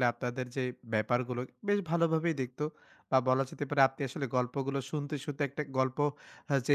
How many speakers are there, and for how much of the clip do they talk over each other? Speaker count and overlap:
one, no overlap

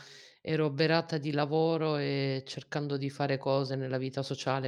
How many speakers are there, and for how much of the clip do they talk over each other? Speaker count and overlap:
one, no overlap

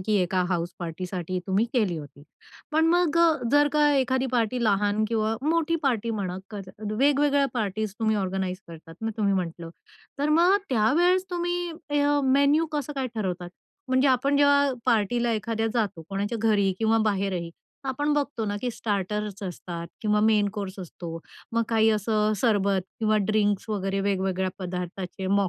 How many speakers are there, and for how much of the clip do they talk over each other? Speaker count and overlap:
one, no overlap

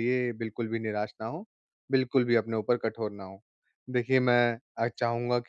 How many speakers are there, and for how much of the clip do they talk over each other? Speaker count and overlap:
one, no overlap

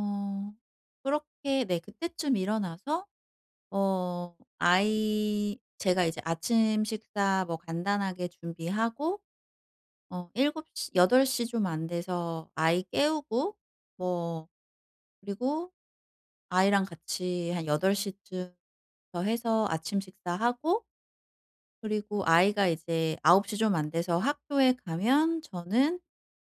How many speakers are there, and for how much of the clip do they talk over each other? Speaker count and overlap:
one, no overlap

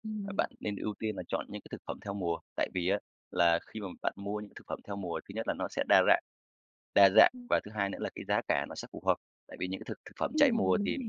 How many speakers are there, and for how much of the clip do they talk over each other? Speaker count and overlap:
two, about 8%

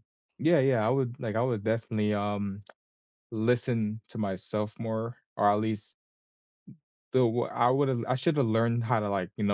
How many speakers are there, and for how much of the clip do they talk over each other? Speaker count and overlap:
one, no overlap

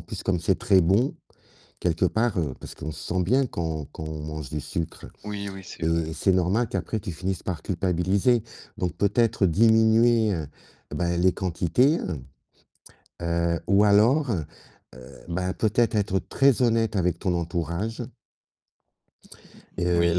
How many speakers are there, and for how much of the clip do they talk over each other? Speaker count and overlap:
two, about 3%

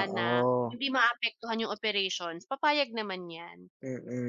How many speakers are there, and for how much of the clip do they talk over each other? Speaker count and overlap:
two, about 17%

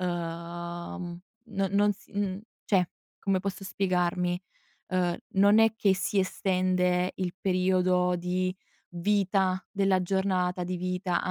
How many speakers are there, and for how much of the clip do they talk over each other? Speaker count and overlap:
one, no overlap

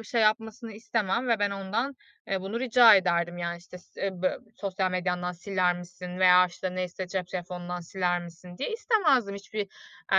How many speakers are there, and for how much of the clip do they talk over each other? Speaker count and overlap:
one, no overlap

